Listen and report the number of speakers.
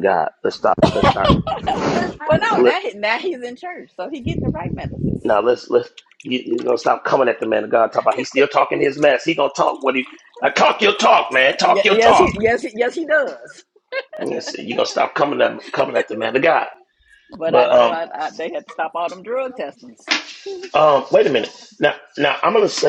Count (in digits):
2